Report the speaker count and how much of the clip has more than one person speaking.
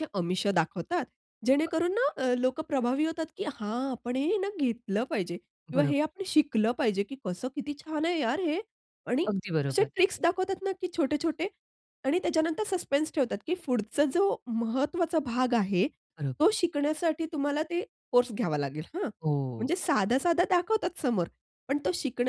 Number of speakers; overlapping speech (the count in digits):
2, about 3%